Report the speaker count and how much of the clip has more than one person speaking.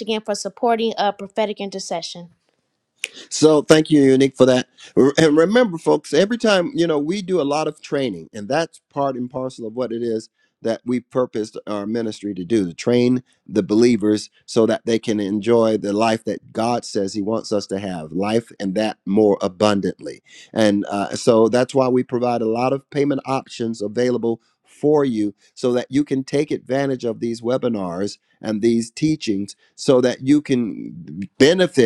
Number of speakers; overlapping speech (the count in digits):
2, no overlap